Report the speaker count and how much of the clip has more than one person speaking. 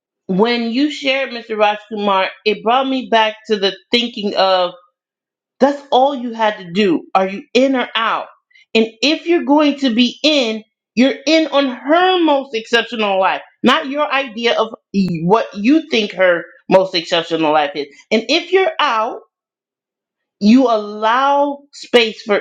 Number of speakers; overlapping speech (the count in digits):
1, no overlap